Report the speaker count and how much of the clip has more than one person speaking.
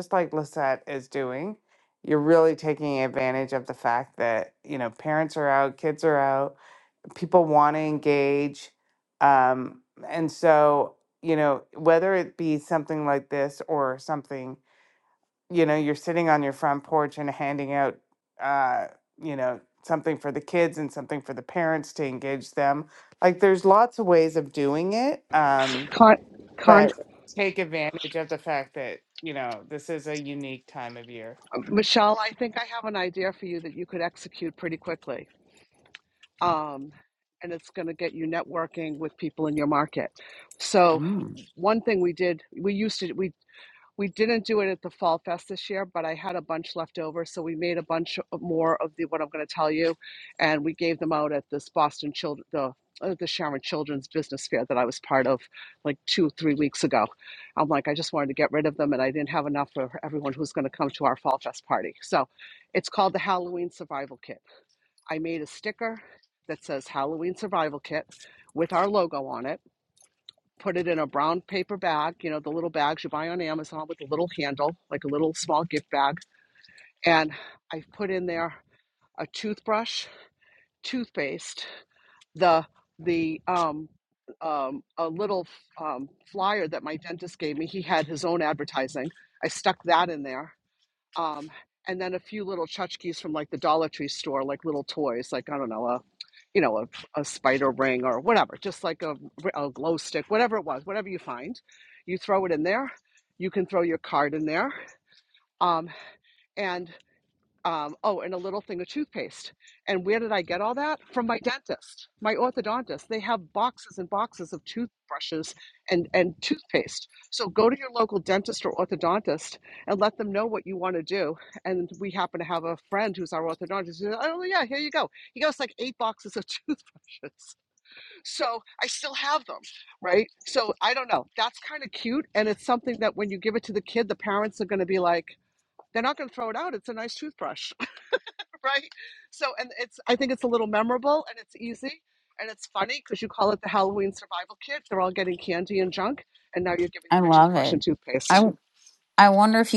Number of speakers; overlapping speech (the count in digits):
3, about 1%